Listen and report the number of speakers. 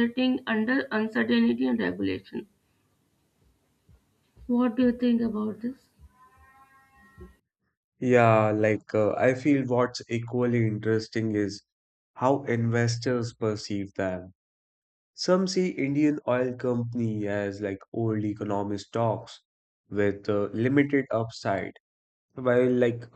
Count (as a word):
two